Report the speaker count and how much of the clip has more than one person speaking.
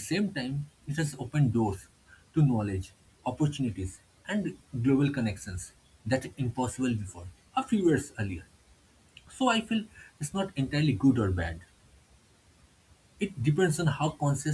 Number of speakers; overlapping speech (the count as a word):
one, no overlap